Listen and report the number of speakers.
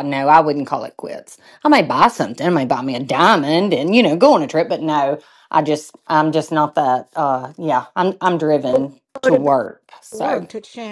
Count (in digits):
2